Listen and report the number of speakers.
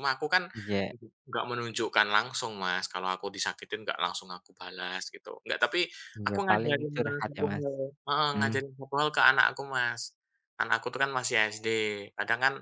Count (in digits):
2